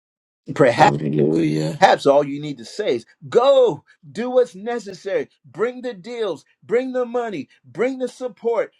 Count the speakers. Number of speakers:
2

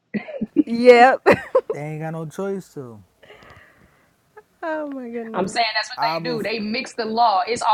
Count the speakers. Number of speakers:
3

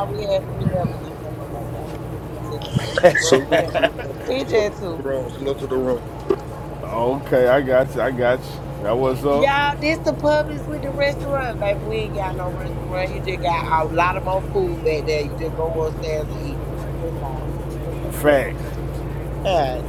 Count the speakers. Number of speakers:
3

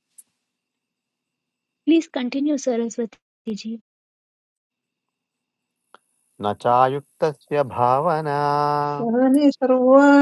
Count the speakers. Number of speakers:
3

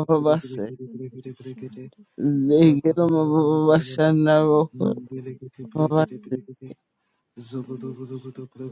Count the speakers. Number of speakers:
3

